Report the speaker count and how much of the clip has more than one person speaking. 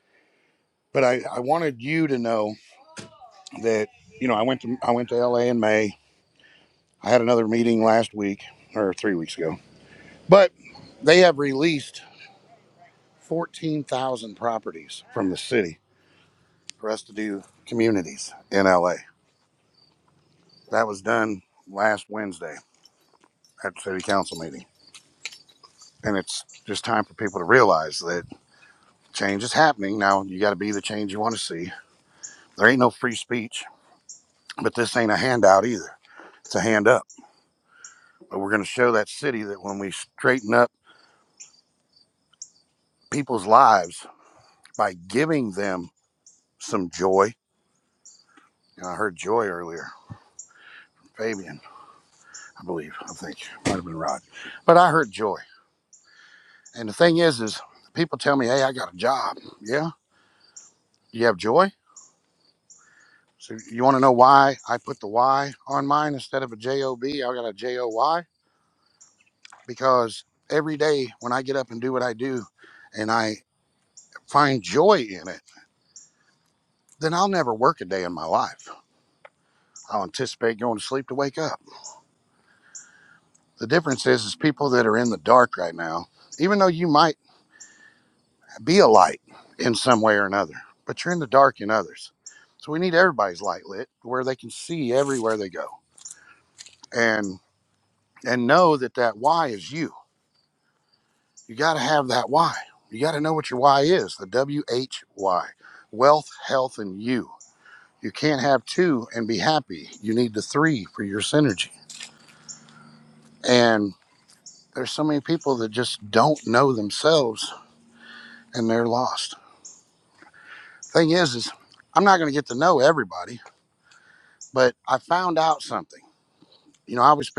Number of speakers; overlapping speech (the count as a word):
one, no overlap